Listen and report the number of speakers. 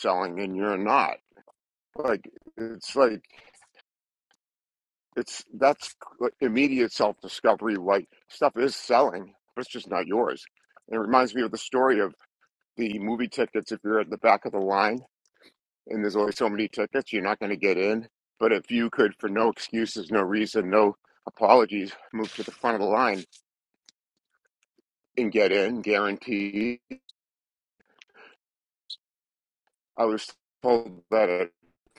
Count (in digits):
1